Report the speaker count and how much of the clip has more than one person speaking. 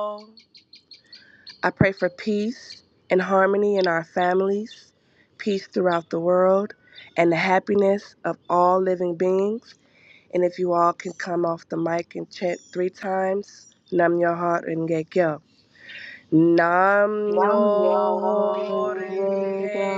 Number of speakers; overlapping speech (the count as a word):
two, about 11%